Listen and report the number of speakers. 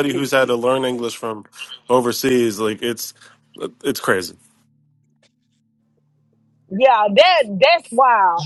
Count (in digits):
2